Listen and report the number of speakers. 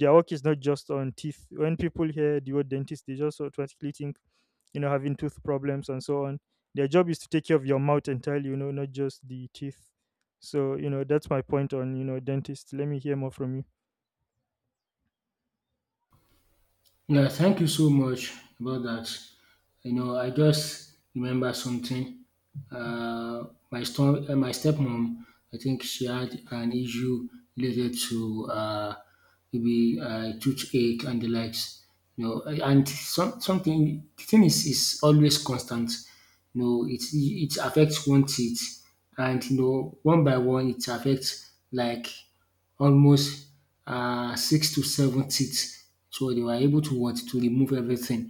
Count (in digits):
2